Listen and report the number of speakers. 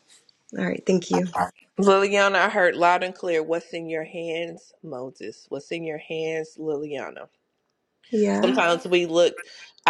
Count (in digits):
2